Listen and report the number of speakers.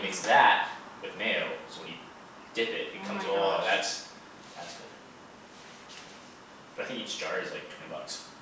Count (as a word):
one